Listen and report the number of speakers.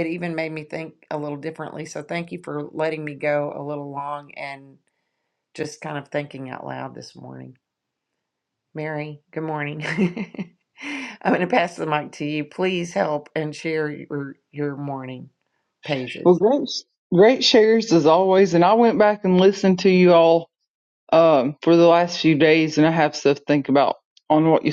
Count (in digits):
2